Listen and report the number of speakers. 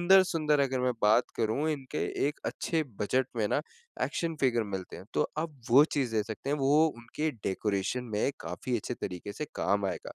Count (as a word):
one